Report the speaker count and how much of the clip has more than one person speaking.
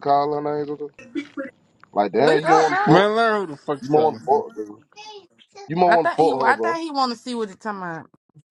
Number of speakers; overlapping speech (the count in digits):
3, about 27%